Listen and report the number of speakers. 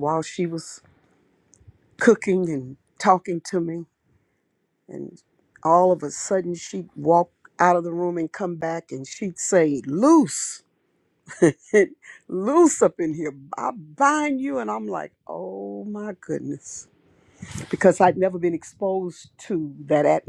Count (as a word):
one